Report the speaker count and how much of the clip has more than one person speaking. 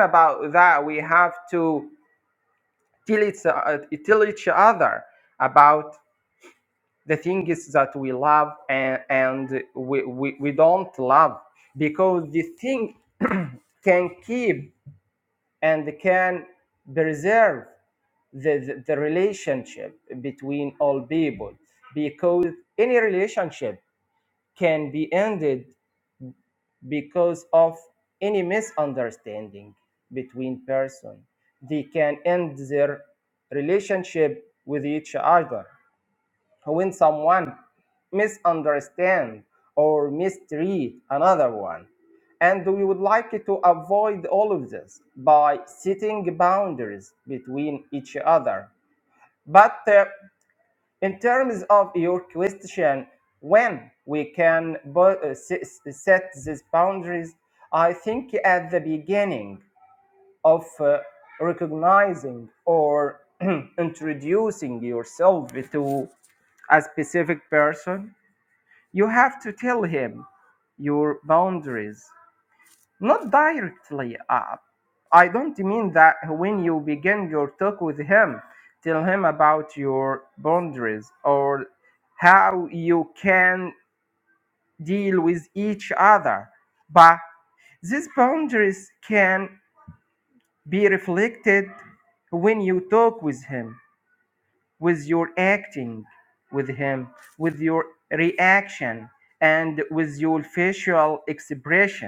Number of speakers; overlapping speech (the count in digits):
1, no overlap